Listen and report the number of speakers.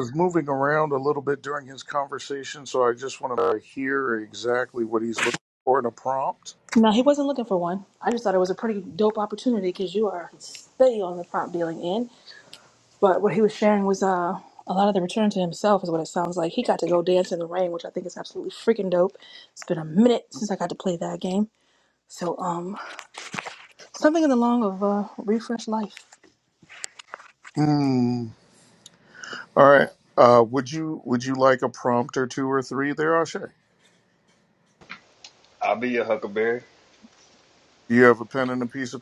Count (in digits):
3